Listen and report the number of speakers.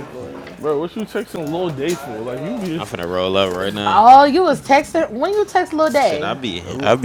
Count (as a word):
three